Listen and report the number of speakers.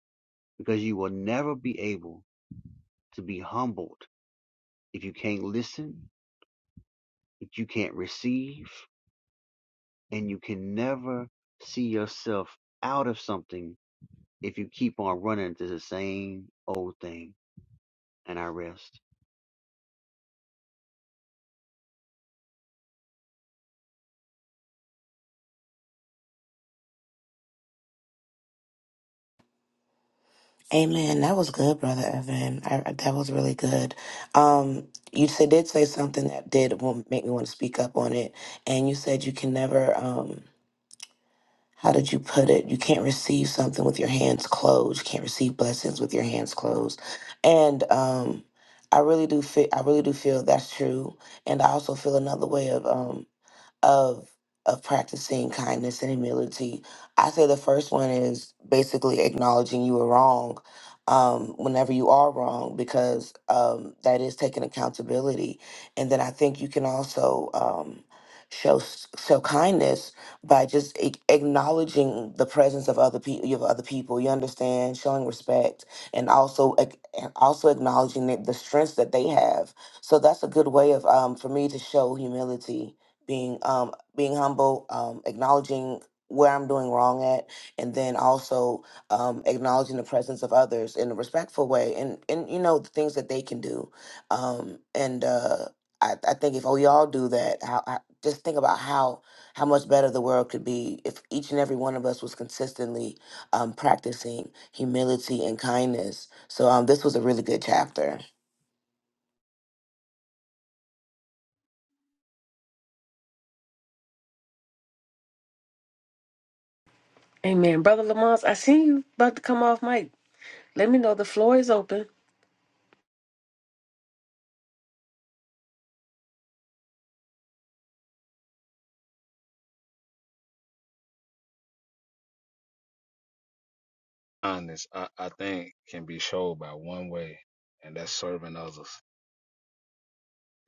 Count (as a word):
four